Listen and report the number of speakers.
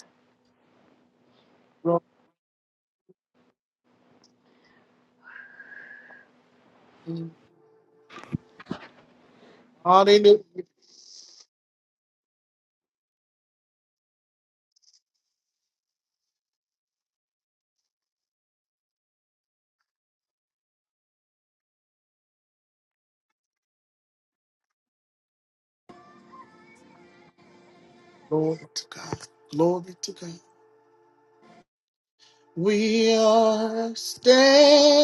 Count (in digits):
1